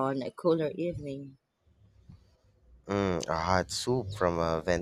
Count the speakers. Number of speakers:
2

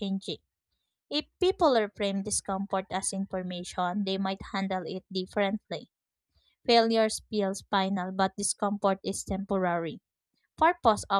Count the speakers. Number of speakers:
1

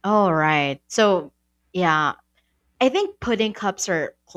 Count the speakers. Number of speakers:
1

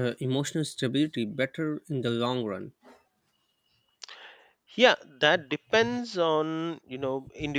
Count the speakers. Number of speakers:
2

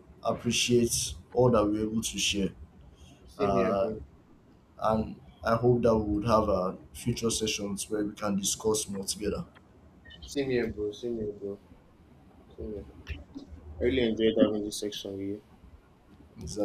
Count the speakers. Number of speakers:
2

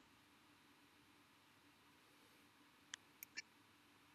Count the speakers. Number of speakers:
0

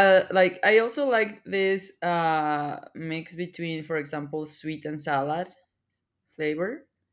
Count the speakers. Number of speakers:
1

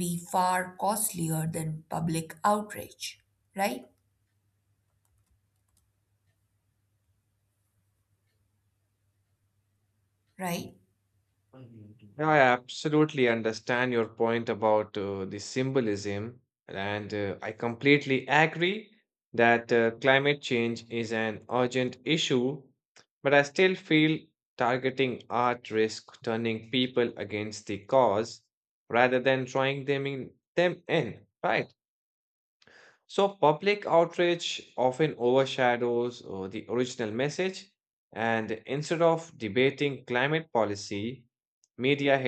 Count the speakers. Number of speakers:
2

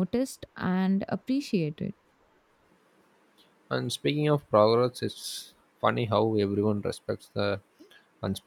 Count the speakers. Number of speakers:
2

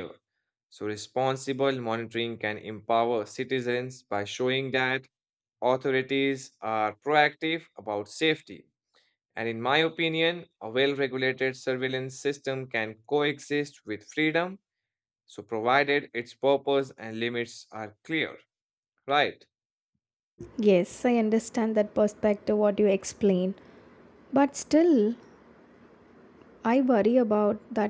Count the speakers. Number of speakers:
2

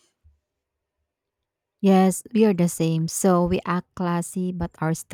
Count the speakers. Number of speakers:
1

